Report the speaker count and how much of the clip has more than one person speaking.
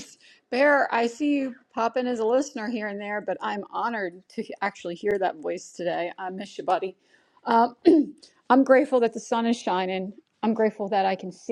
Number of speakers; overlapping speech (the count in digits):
1, no overlap